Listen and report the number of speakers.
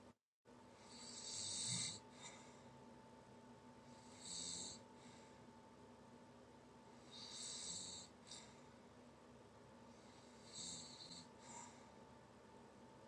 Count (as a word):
zero